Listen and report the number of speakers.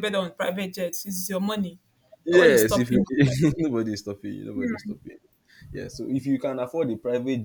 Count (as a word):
two